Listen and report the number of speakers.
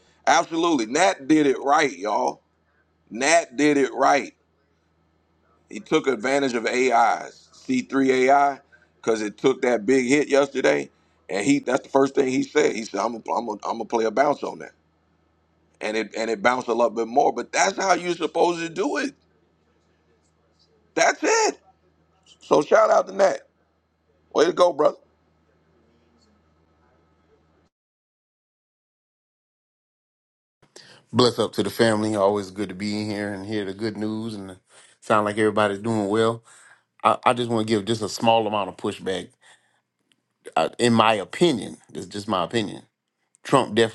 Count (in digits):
2